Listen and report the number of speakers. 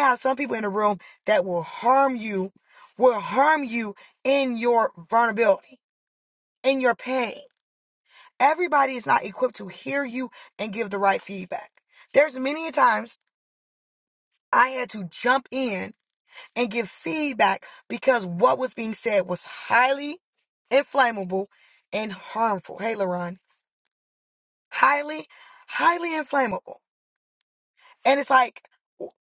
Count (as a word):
one